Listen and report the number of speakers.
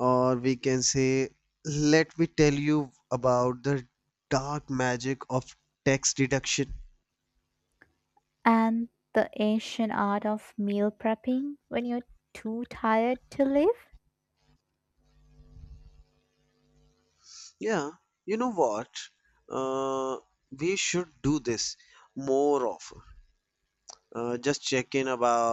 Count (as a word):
two